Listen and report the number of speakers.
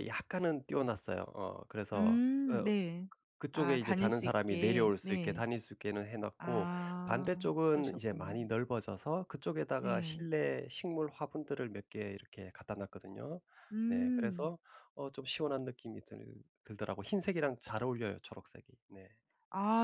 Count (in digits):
2